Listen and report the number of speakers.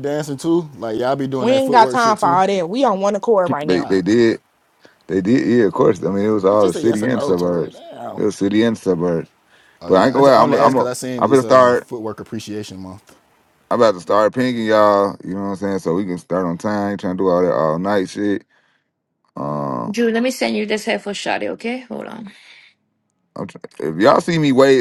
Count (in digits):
4